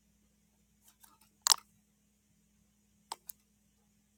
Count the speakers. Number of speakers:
zero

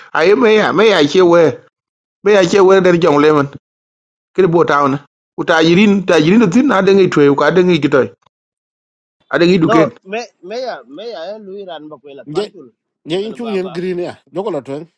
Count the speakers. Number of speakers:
three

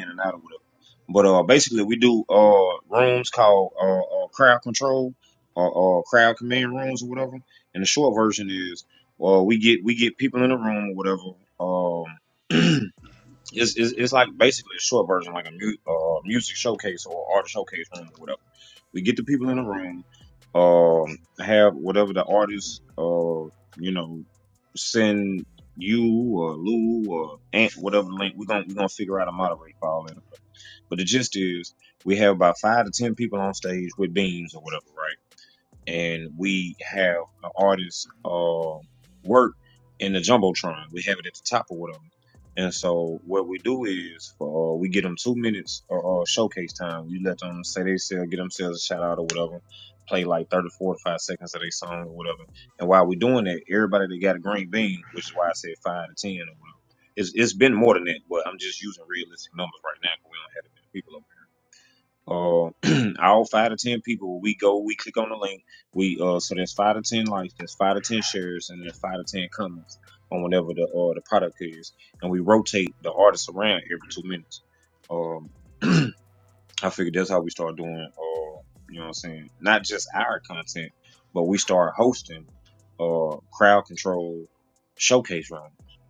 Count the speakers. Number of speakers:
one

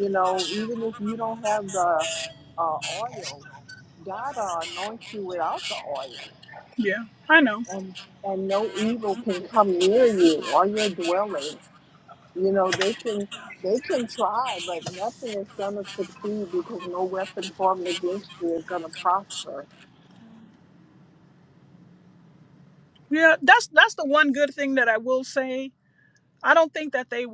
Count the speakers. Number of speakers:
two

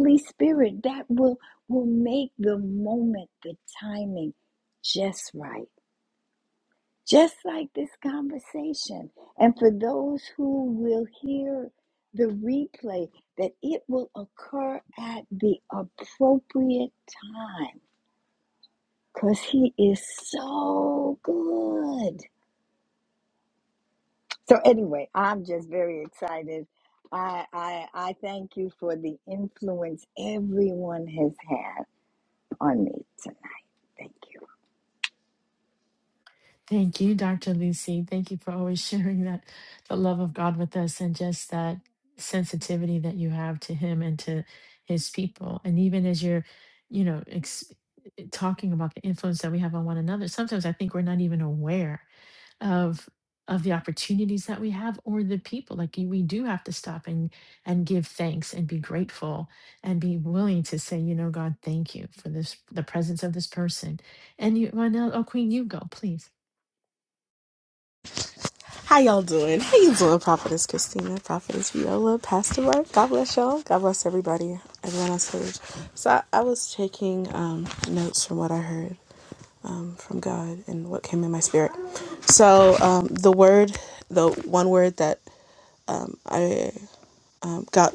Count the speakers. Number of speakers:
three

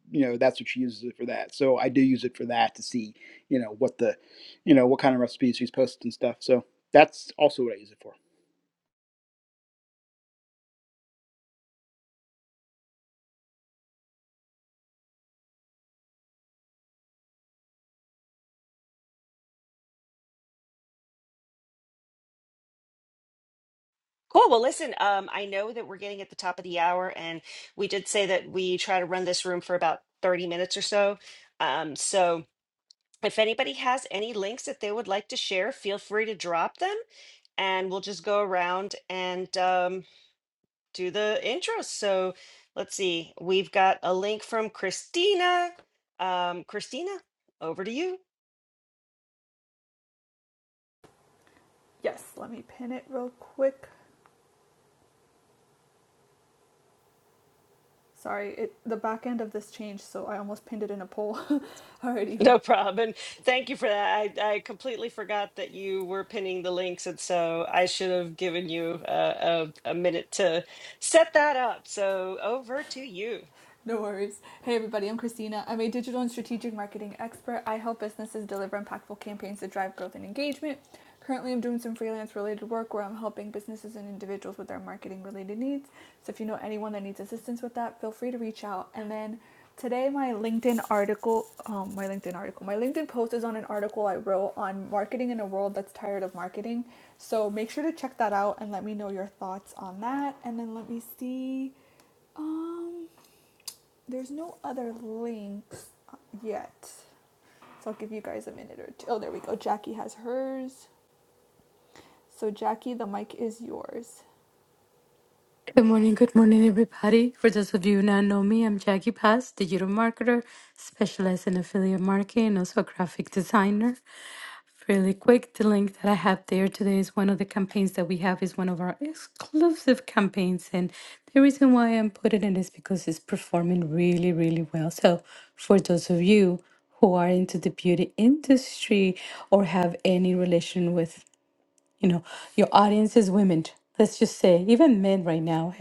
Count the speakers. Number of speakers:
four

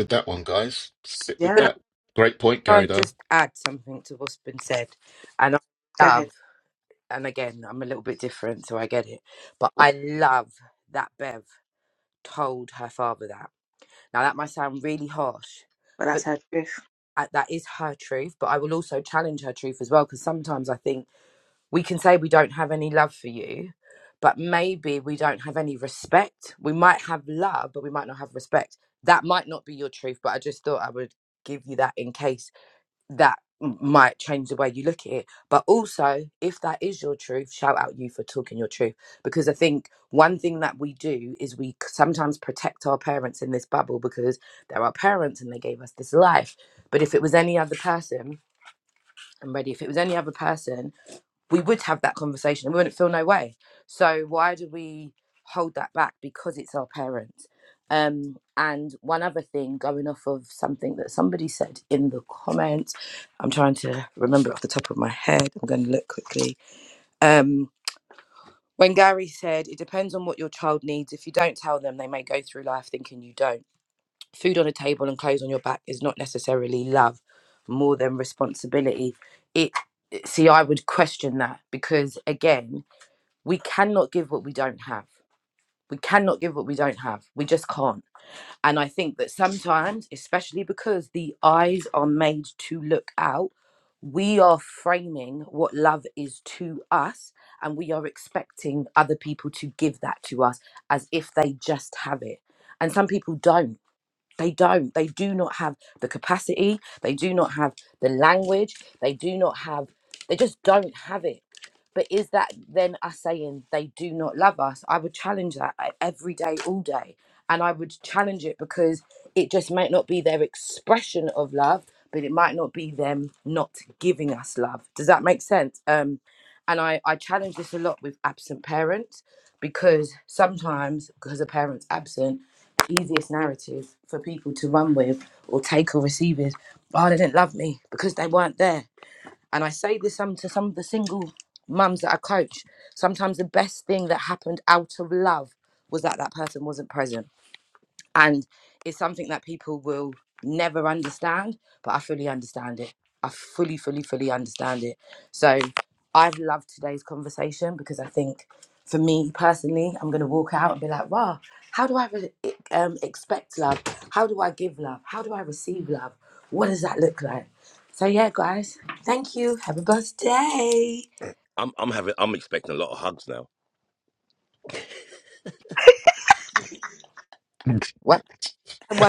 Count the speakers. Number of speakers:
four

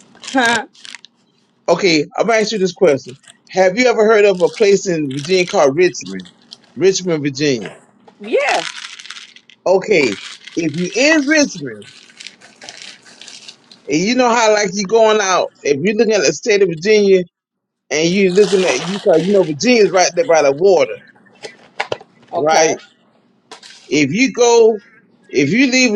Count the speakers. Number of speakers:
two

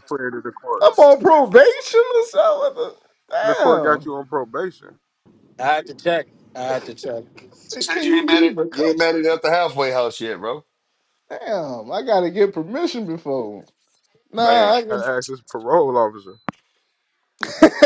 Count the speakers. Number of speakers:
four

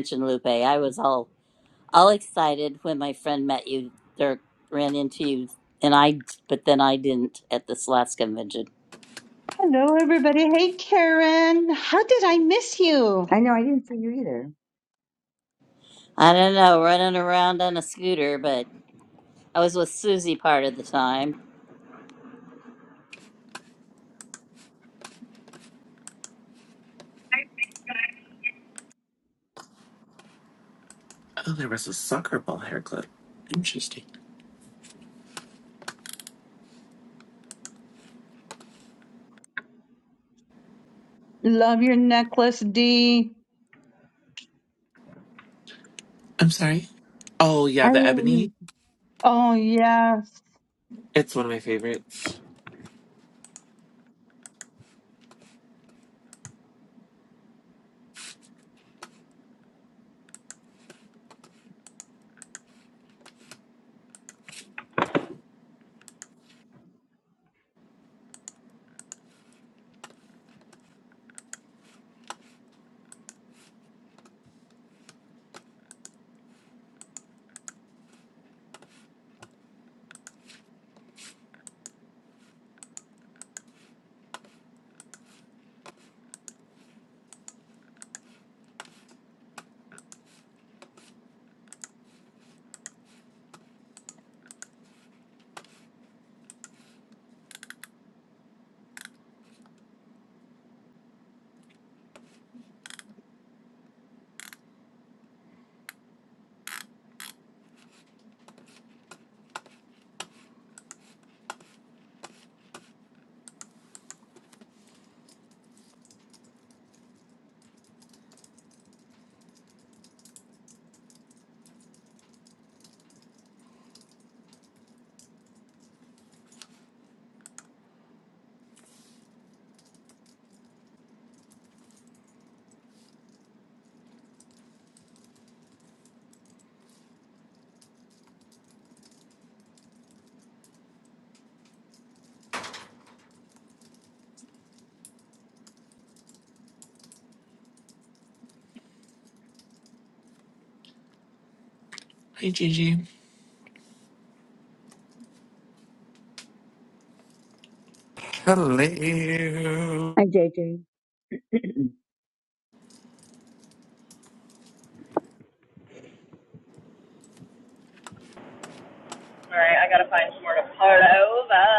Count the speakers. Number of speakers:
six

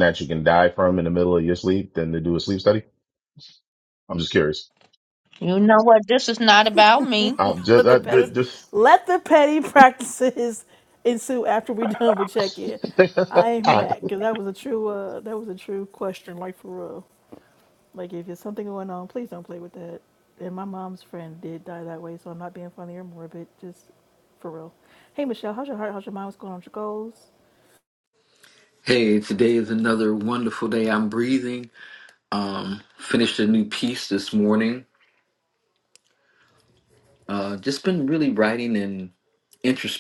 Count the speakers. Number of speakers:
four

